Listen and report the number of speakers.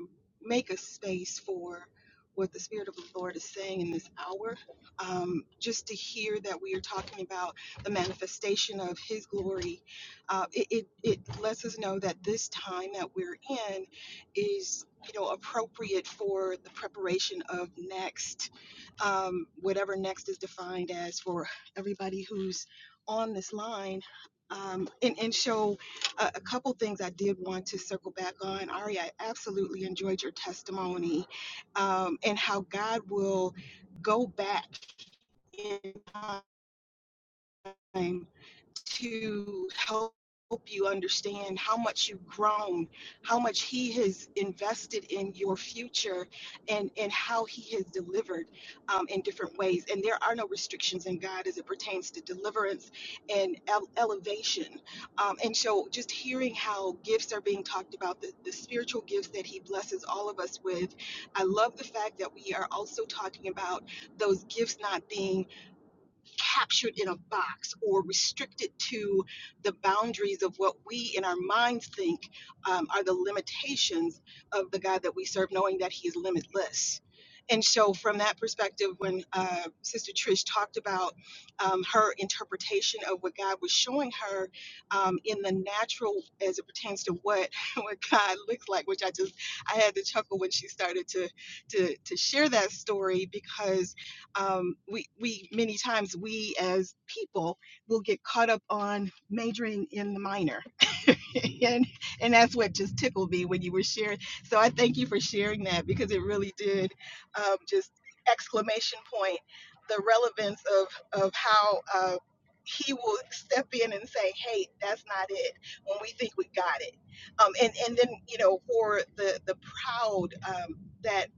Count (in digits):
1